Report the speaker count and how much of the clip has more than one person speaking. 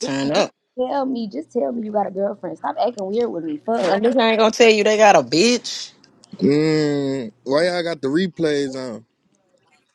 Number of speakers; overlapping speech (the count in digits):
3, about 3%